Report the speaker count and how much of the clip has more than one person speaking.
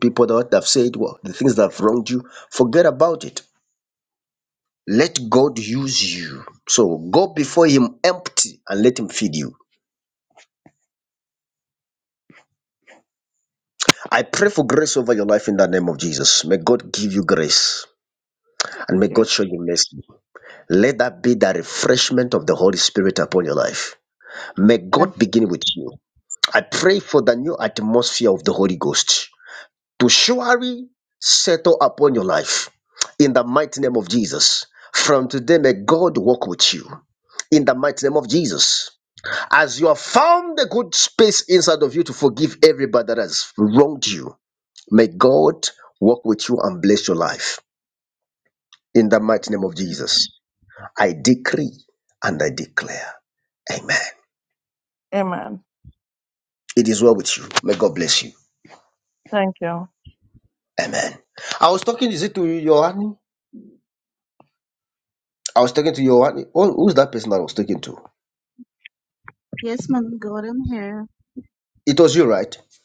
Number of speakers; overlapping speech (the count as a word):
three, about 1%